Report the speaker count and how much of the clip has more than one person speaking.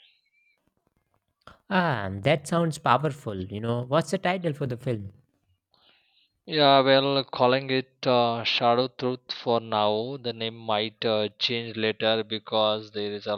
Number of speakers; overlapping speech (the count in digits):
2, no overlap